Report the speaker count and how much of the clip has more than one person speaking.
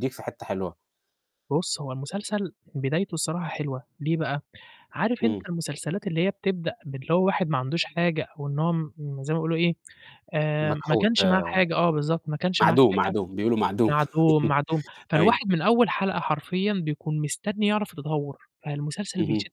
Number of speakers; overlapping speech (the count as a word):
two, about 12%